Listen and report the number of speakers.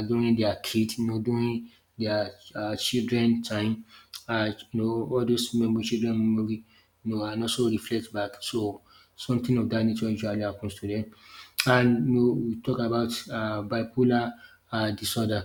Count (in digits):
1